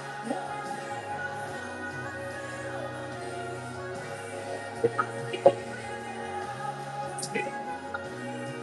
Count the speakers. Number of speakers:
0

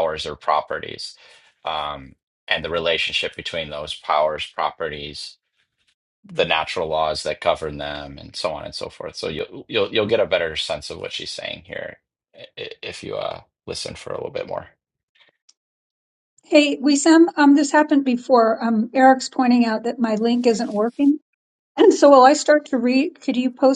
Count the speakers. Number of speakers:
2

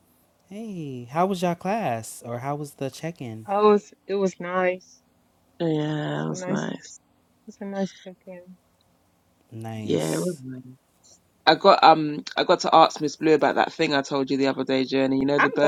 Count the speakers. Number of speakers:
3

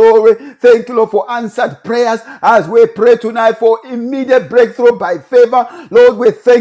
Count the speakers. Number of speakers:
1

